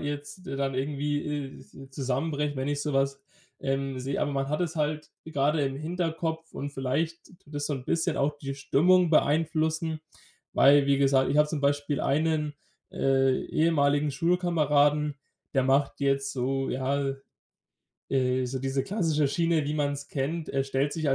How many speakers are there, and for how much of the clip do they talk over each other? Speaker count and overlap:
one, no overlap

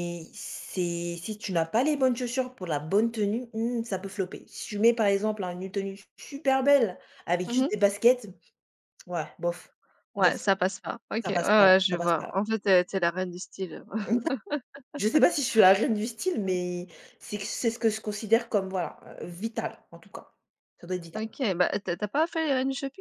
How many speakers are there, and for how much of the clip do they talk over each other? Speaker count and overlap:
two, about 8%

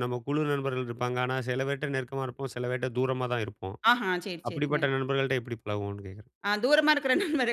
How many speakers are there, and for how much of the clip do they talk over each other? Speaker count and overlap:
two, about 5%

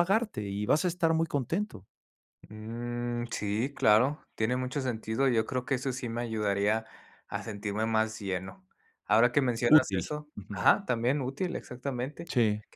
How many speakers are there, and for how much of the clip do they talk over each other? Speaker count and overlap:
two, about 7%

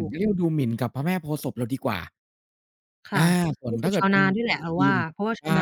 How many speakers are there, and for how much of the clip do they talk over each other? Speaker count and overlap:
two, about 30%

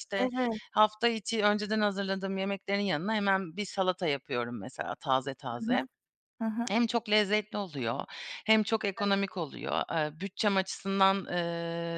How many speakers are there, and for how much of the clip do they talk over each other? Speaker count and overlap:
two, about 5%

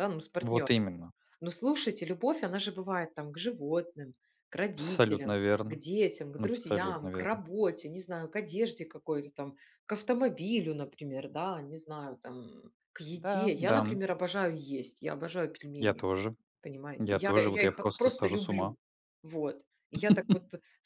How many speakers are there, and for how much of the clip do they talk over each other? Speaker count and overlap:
two, about 21%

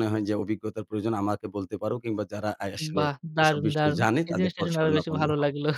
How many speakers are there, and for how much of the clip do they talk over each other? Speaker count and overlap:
two, about 45%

